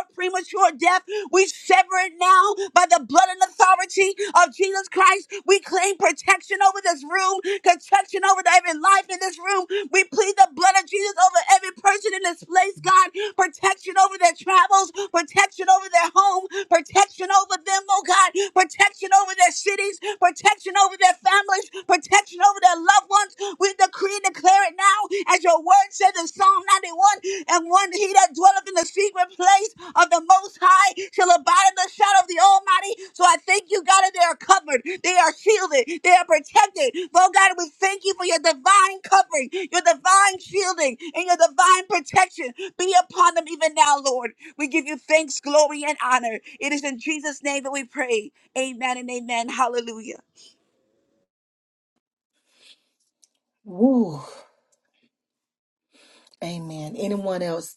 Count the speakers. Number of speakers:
two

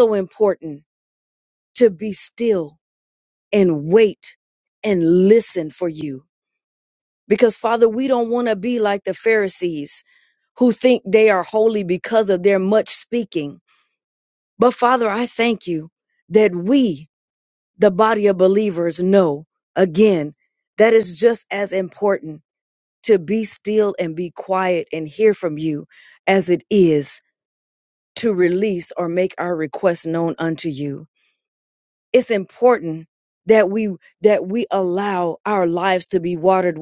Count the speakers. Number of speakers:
one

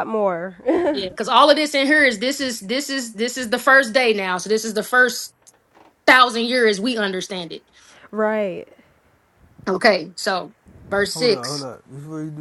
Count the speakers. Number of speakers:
three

